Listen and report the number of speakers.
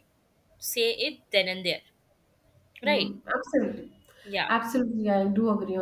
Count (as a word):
two